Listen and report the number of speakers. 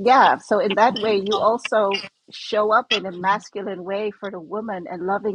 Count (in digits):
1